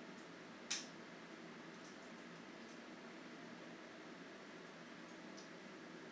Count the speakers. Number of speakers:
0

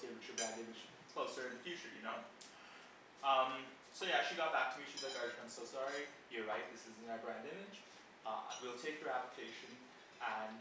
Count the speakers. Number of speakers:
1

